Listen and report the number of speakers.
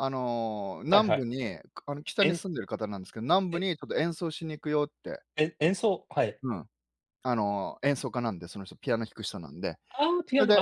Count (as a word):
two